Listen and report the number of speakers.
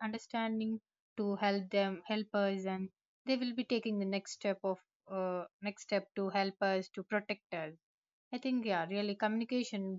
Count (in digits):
1